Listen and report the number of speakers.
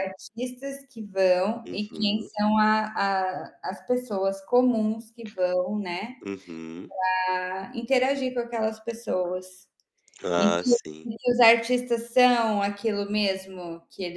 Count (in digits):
2